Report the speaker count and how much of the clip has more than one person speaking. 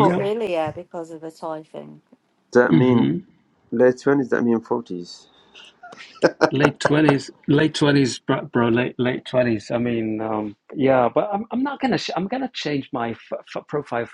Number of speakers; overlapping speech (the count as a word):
three, about 5%